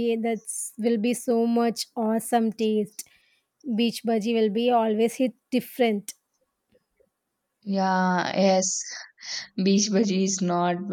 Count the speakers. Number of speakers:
two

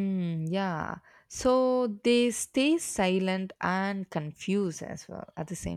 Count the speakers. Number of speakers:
one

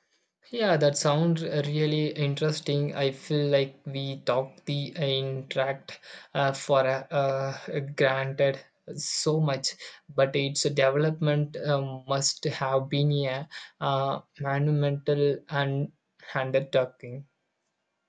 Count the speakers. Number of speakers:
one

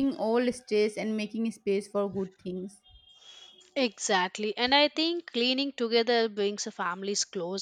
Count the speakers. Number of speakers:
two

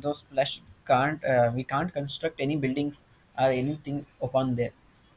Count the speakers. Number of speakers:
one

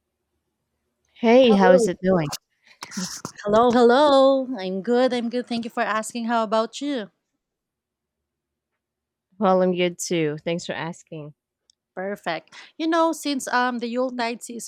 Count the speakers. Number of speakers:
two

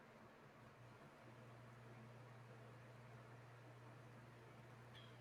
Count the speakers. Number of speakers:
zero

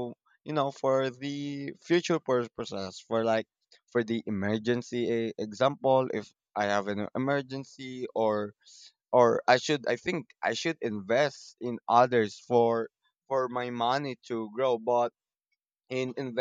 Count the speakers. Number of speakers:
one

